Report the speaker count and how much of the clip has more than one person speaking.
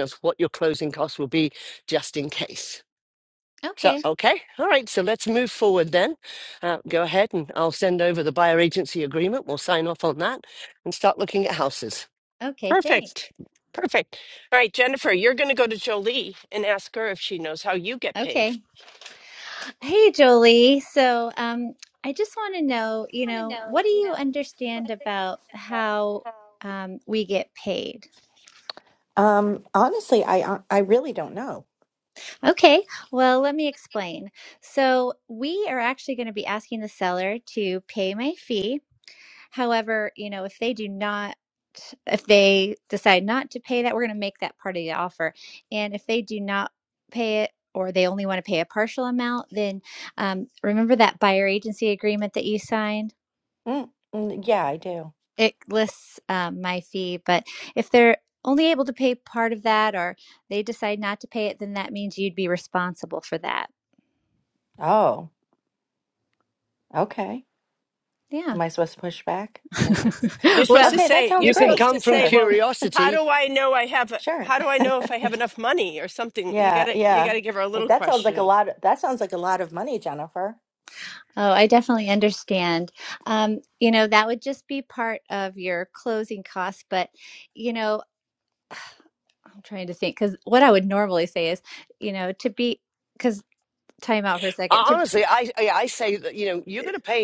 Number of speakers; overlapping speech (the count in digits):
4, about 5%